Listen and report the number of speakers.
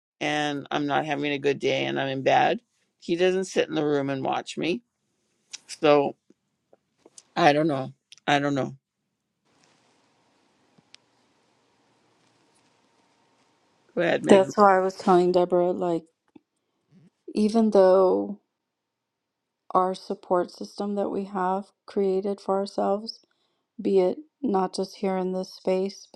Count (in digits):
2